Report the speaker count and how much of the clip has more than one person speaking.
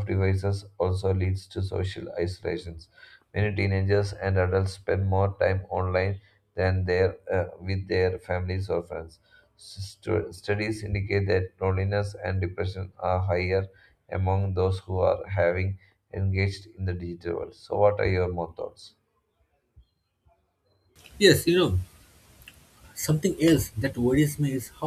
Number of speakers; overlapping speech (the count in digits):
2, no overlap